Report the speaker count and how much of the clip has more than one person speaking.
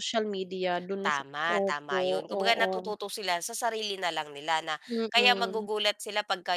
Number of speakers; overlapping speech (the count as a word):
two, about 37%